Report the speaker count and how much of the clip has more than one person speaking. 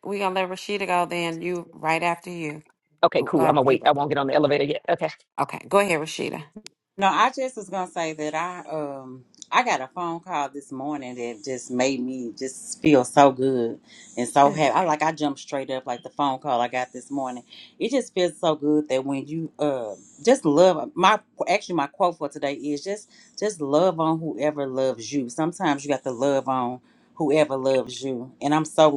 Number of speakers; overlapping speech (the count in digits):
3, about 3%